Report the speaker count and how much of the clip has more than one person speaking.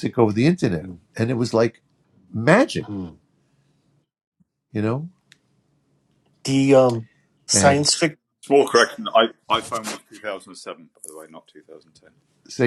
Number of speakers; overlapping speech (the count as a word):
three, about 3%